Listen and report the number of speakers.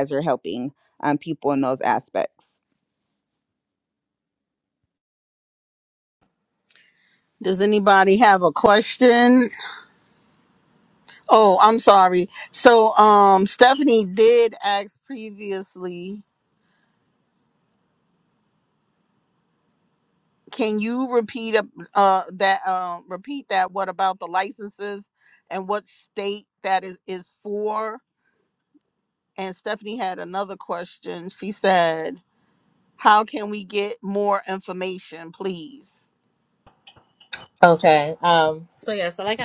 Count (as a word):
three